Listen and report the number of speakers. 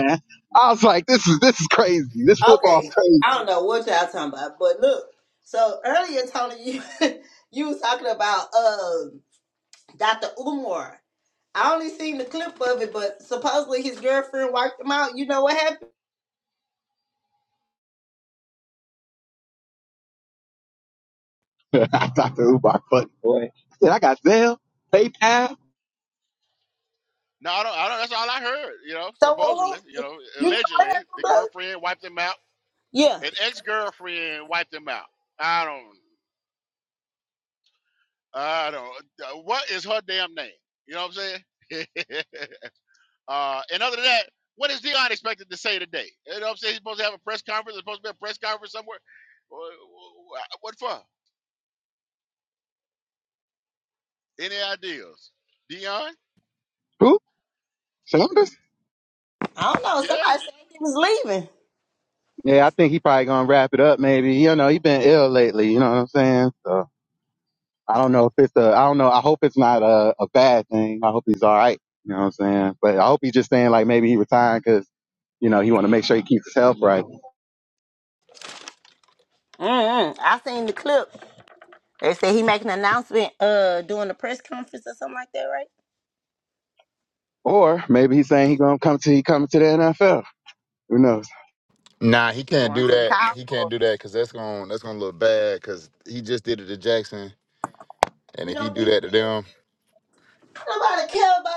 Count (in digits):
4